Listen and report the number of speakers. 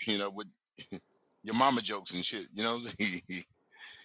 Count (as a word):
one